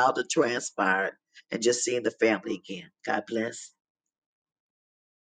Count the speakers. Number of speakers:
1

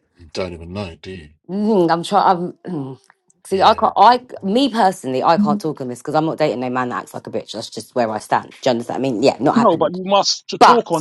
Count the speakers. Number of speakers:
3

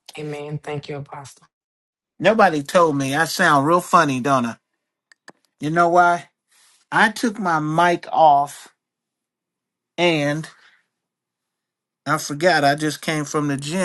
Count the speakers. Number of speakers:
2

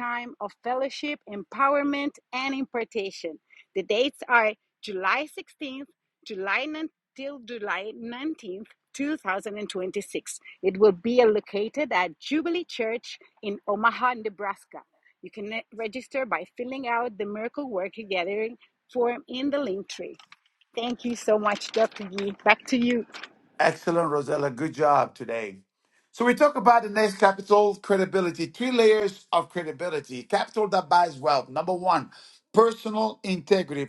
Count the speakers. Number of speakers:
2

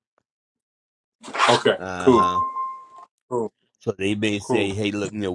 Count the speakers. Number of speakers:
2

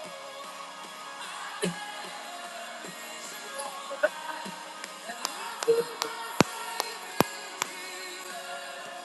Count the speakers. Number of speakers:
0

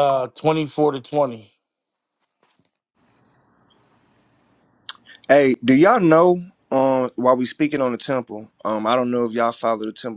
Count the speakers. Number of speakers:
2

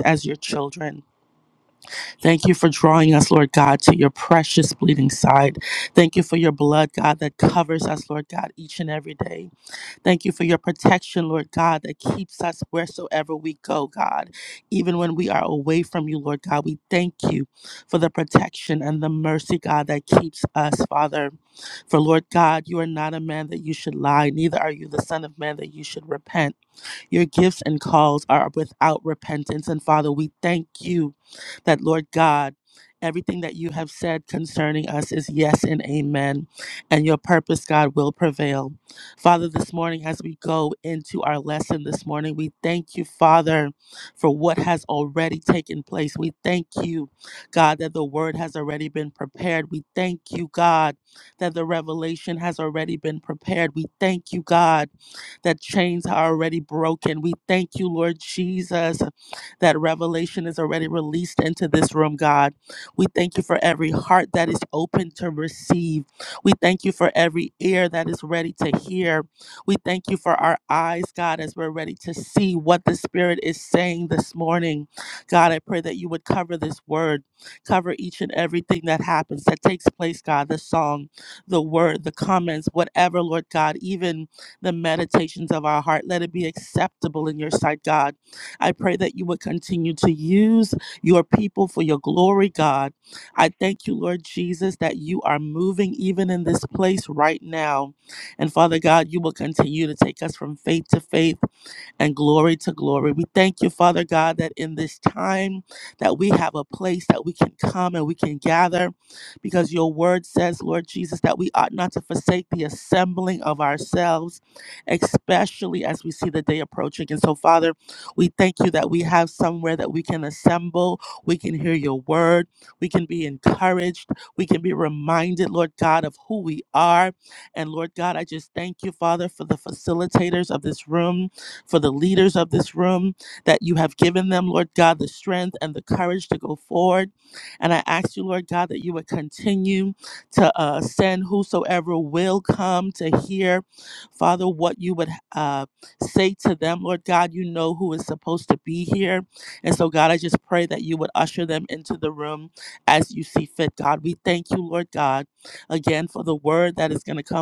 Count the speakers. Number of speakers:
1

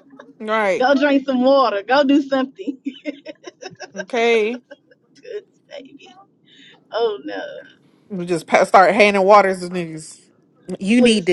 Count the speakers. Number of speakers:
2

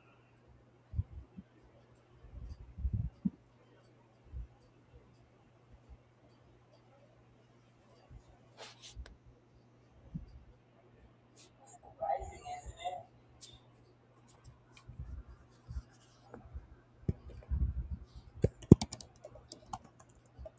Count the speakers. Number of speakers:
0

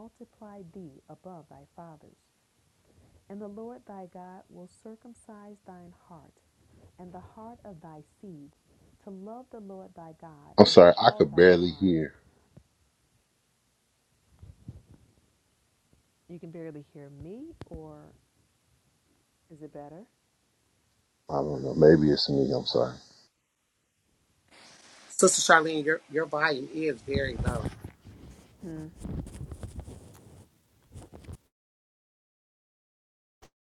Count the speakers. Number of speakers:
3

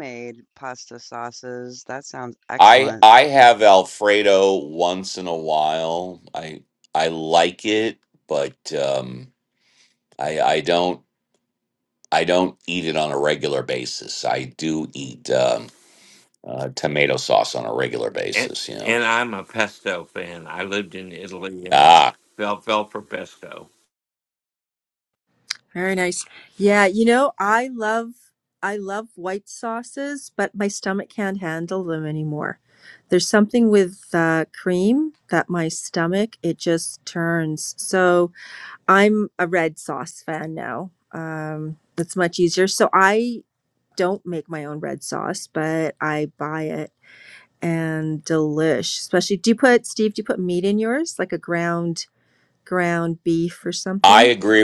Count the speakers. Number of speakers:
4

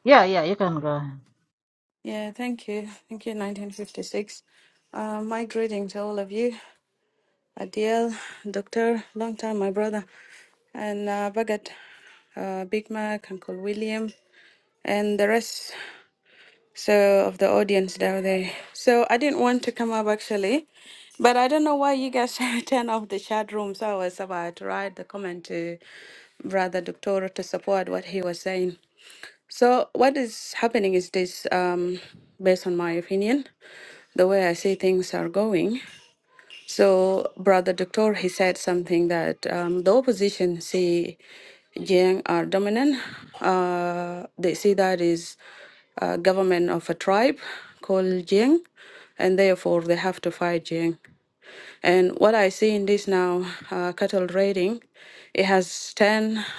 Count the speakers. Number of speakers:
2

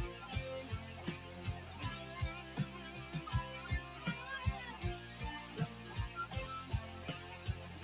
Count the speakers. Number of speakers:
0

